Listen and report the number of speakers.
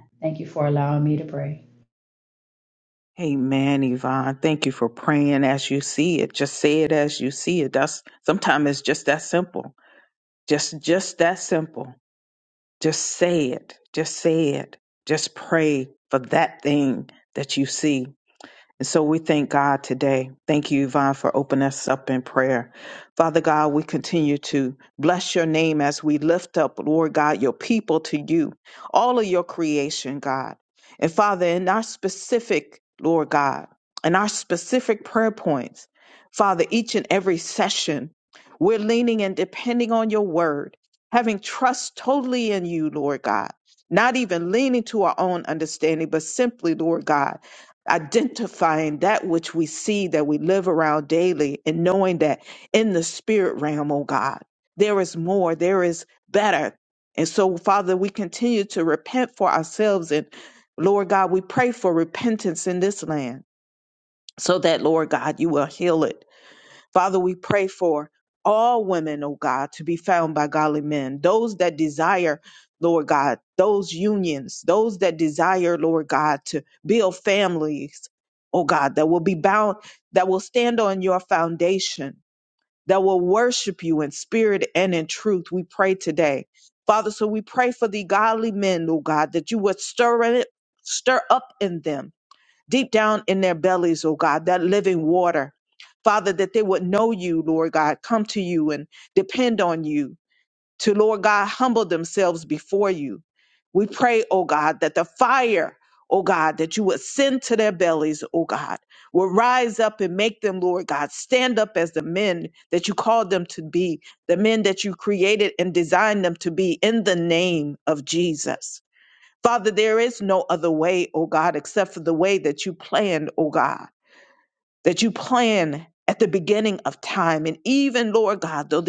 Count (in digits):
2